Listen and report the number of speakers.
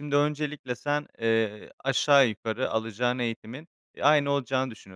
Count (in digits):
1